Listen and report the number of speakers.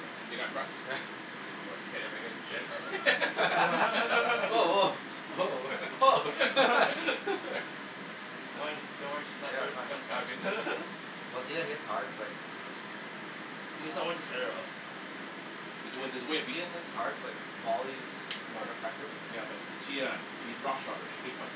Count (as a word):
three